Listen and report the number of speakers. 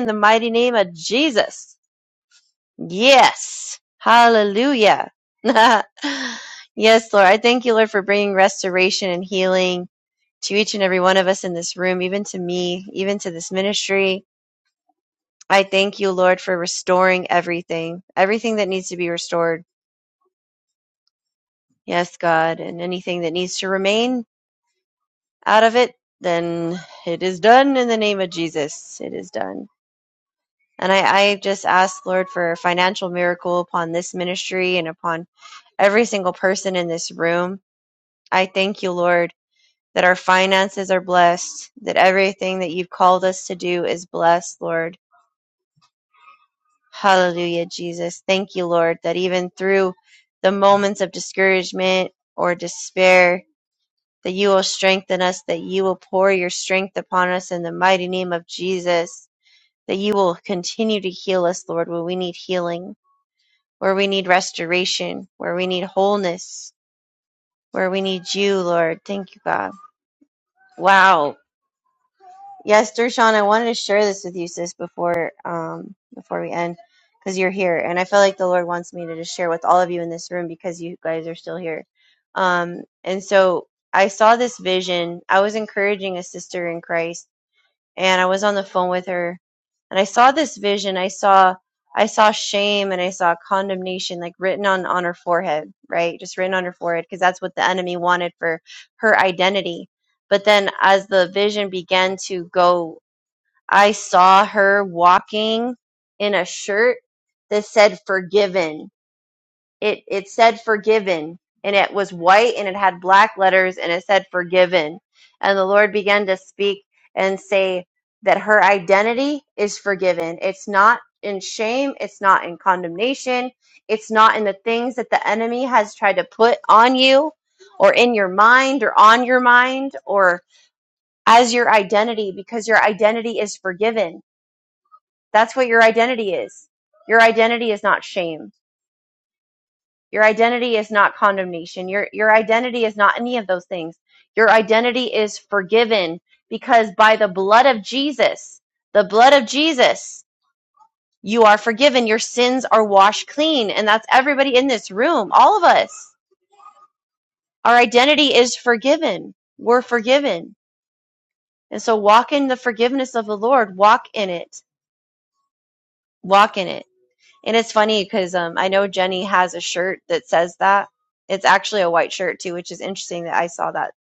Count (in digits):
1